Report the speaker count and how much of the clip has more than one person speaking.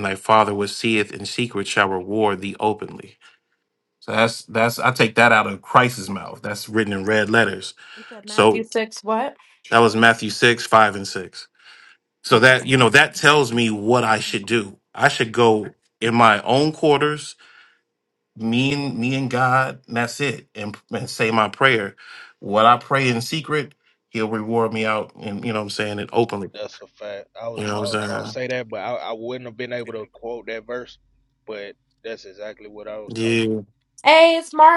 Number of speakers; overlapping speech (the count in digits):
3, about 5%